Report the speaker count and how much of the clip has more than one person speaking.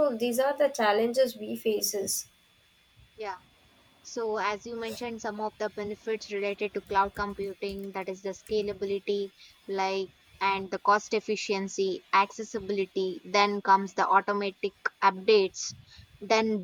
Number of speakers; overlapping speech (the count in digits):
2, no overlap